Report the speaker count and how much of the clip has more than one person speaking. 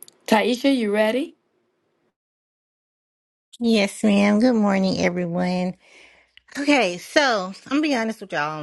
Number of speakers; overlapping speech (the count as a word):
two, no overlap